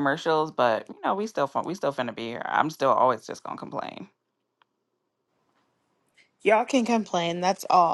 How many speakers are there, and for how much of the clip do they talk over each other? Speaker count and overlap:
2, no overlap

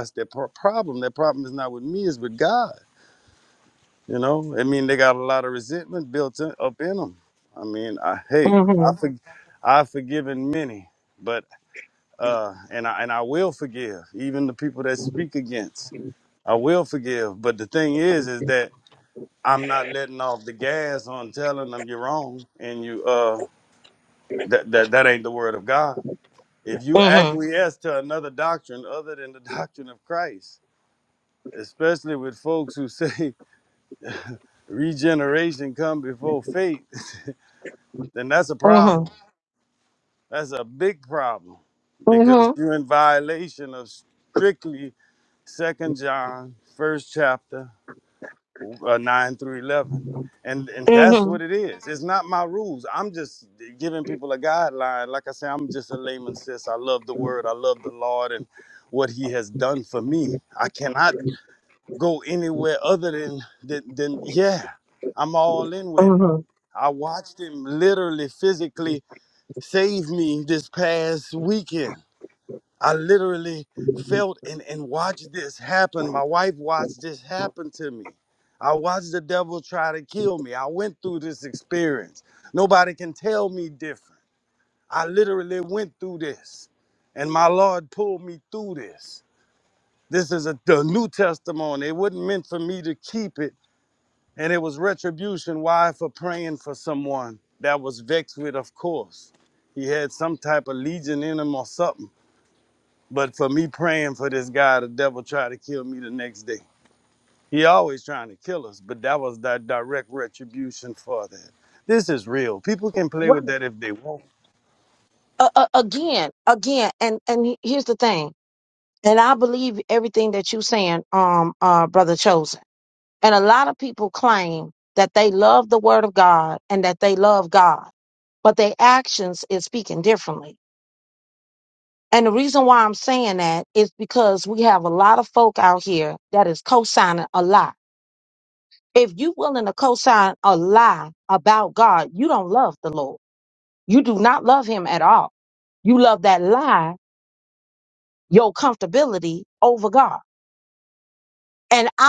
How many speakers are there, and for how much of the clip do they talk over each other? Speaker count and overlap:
2, about 2%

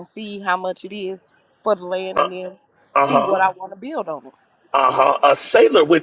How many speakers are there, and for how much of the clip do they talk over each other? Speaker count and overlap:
2, about 9%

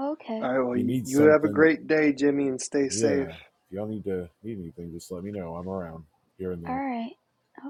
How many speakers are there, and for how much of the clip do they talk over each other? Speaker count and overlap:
3, about 17%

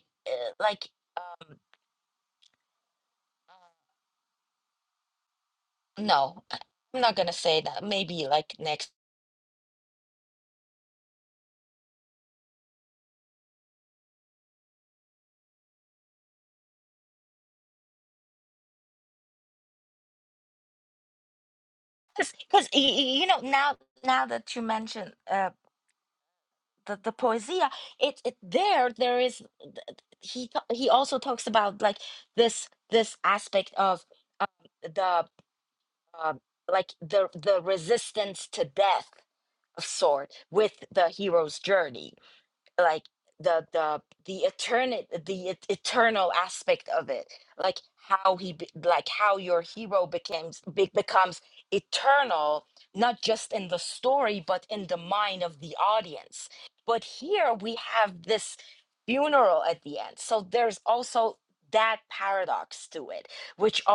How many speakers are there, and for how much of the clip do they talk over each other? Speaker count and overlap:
1, no overlap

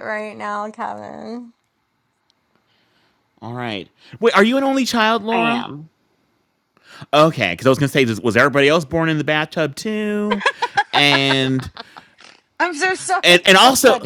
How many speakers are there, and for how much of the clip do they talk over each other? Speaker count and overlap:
3, about 8%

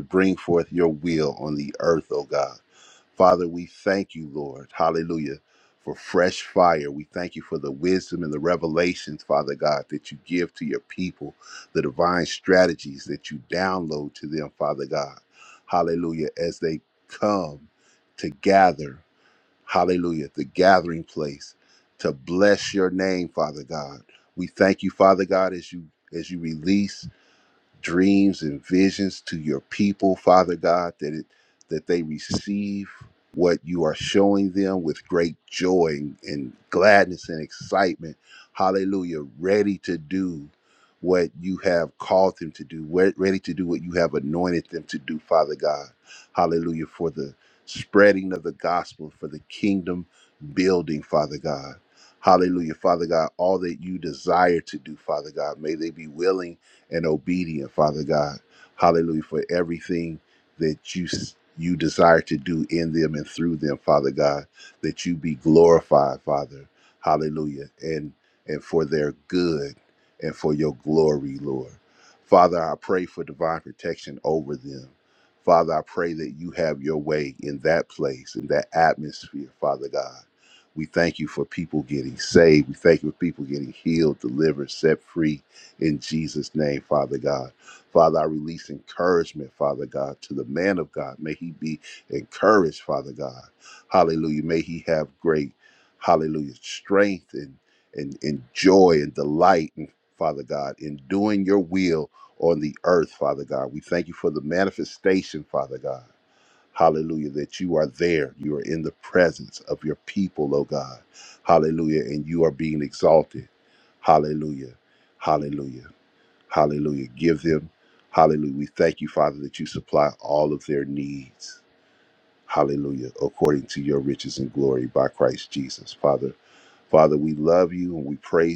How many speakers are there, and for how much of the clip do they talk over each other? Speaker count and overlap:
1, no overlap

